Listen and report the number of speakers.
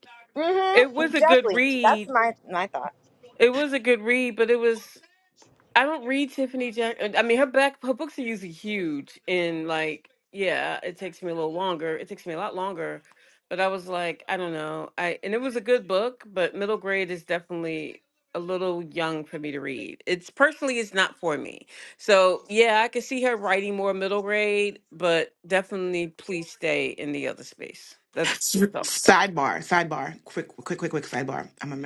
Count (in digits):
3